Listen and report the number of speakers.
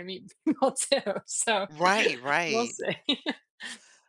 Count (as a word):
two